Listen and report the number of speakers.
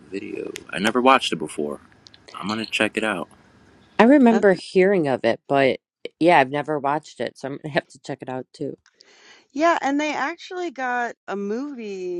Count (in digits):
3